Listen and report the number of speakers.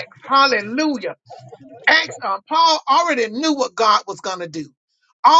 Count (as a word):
one